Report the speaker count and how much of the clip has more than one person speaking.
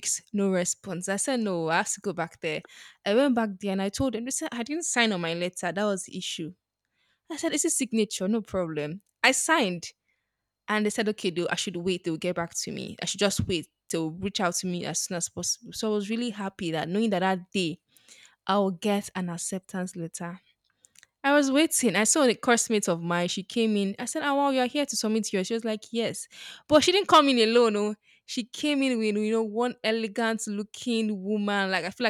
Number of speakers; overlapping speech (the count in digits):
1, no overlap